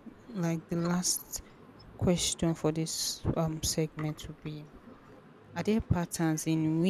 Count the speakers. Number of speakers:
1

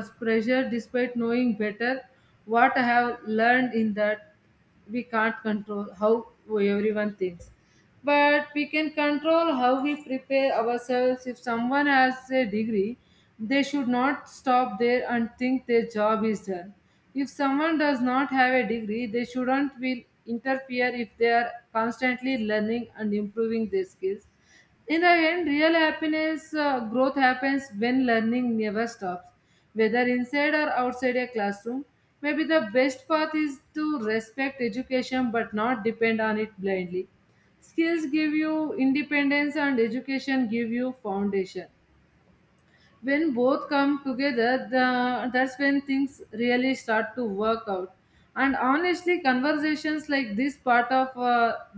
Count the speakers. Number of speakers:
1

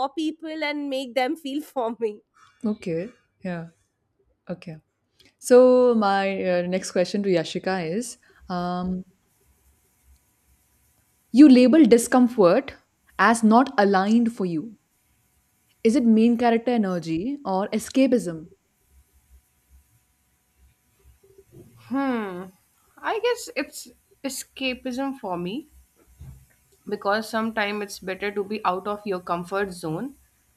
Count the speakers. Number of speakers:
3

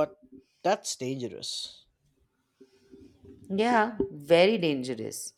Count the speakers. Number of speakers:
2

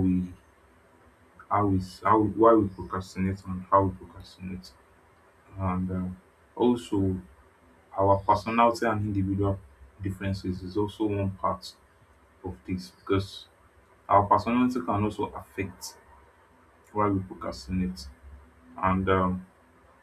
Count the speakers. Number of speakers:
1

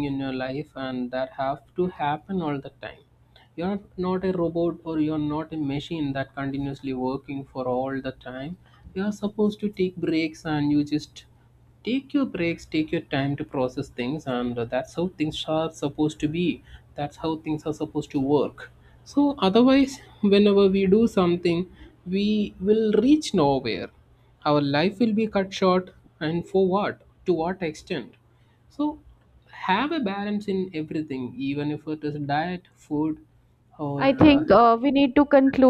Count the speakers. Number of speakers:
2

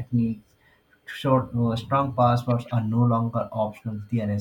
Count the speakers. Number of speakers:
1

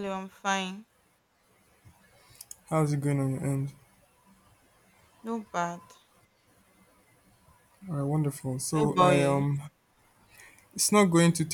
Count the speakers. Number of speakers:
2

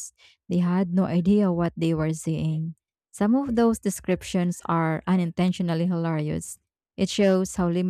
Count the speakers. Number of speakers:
1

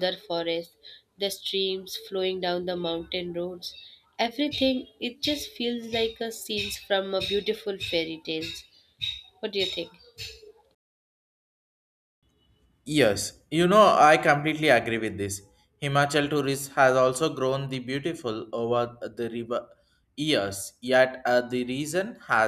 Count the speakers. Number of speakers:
2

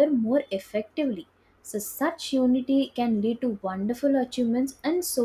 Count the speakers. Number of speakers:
1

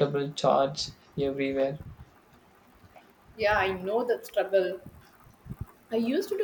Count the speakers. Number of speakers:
2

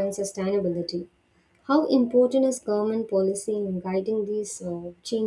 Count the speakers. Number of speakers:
1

